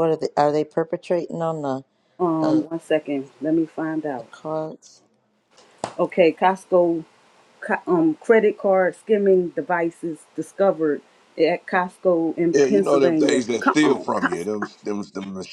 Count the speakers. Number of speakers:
3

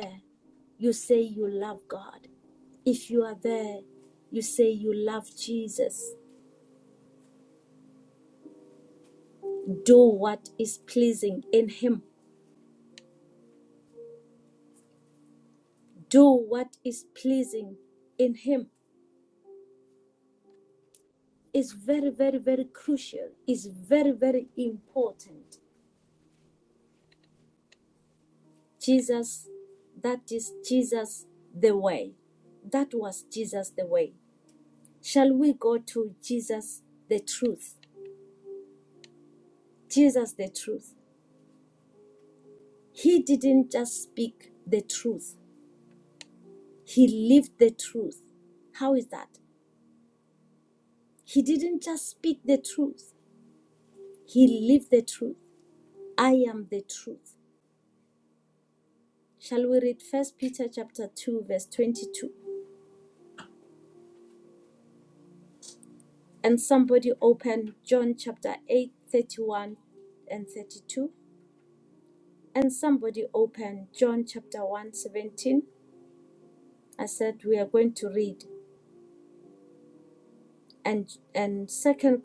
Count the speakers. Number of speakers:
1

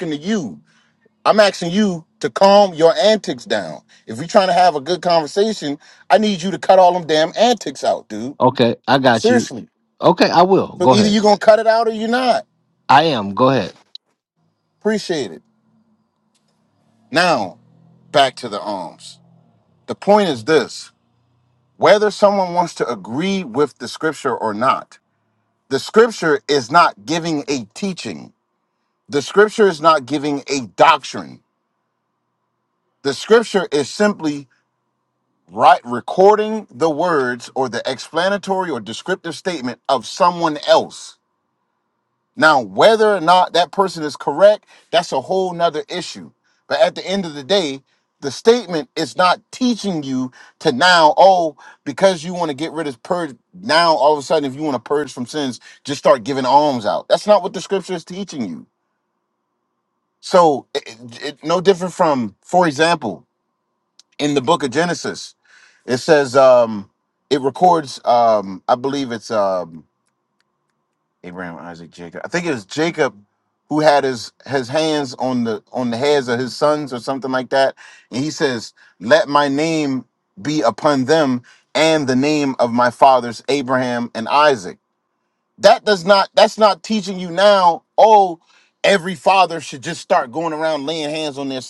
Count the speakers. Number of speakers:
2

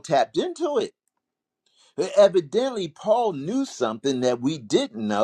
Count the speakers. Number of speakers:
1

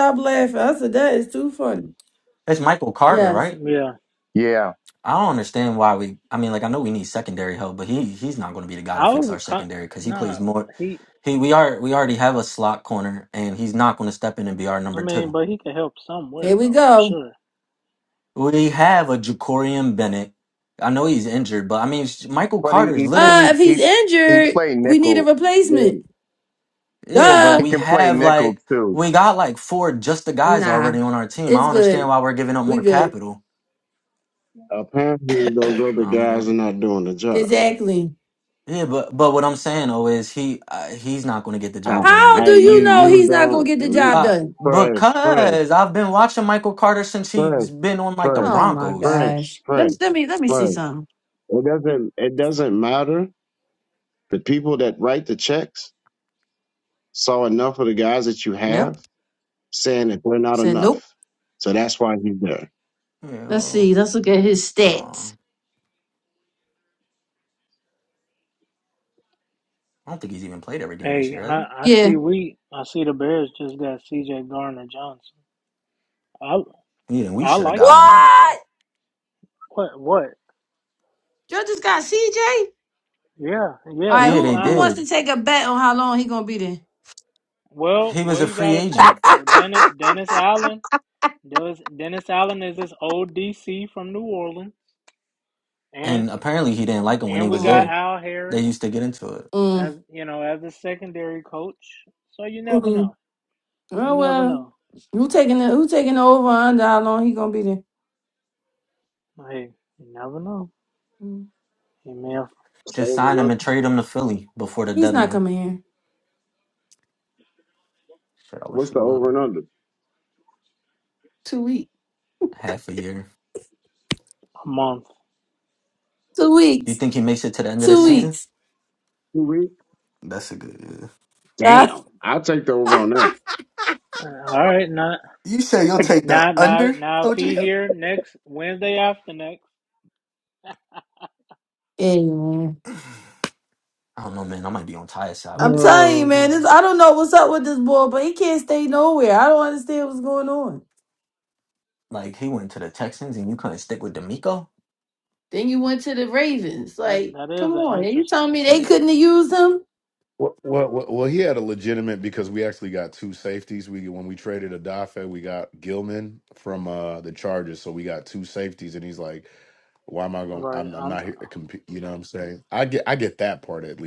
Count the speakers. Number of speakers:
6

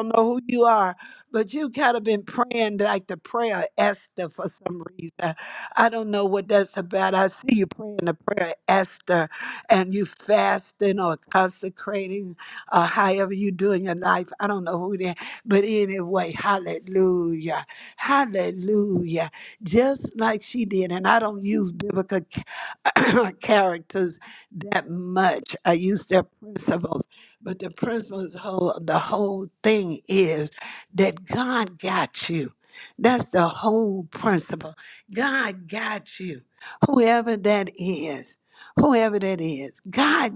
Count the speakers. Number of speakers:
1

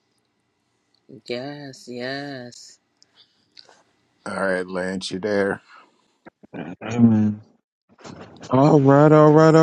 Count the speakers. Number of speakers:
3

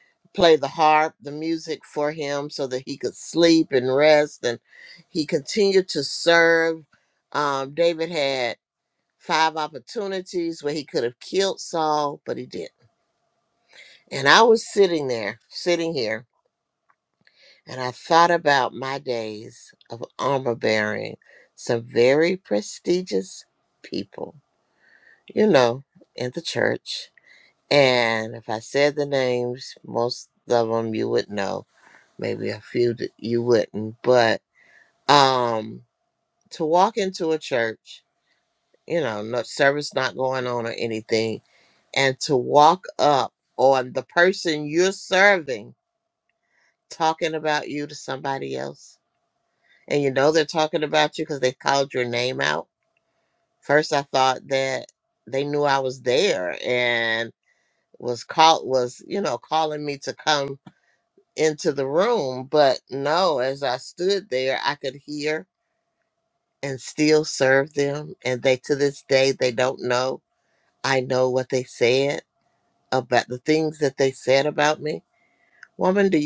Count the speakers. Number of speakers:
1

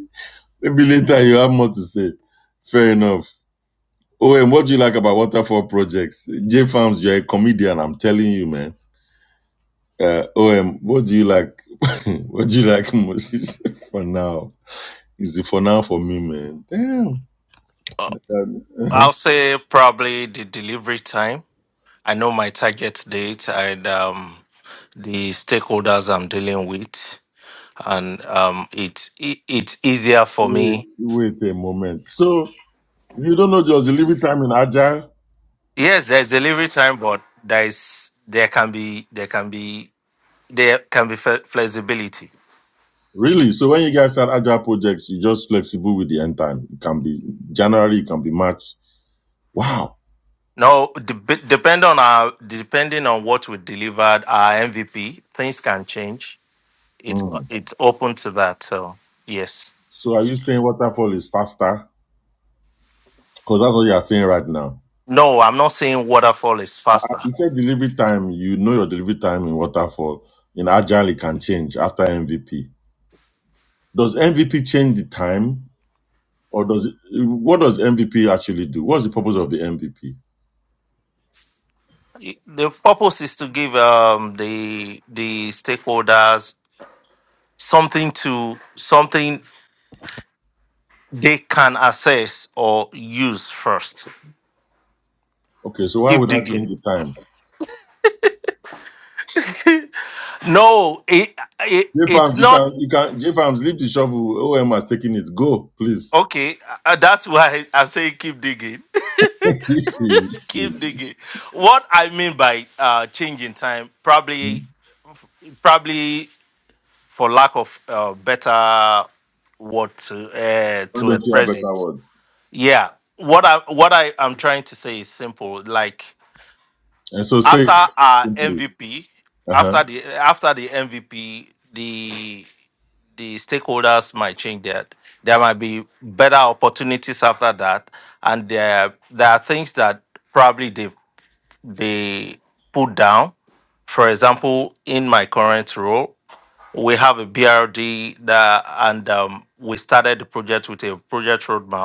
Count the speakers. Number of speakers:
2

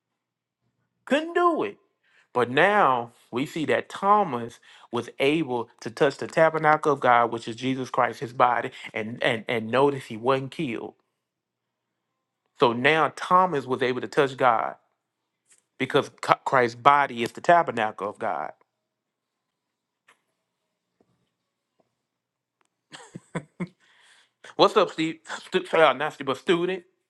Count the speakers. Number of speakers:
1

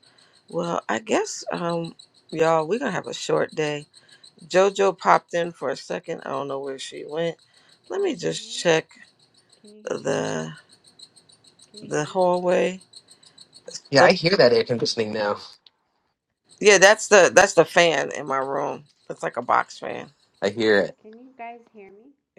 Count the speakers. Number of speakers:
3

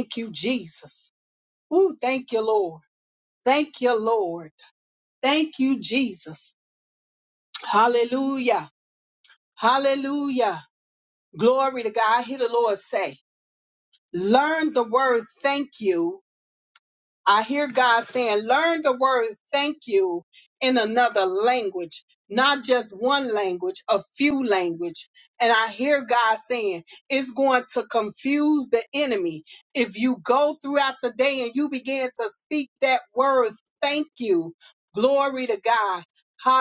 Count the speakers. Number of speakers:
1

